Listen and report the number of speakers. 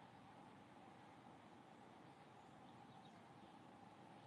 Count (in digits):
0